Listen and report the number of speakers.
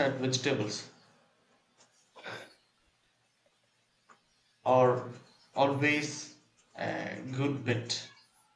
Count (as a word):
one